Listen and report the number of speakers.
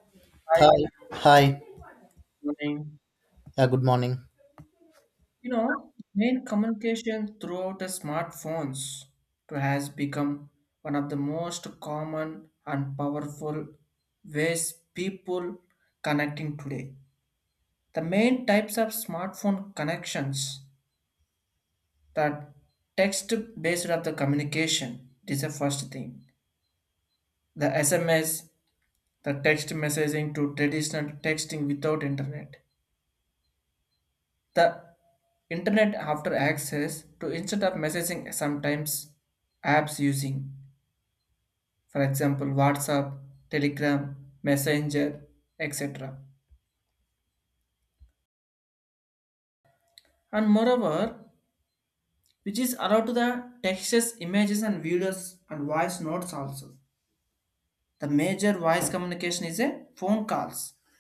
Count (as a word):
two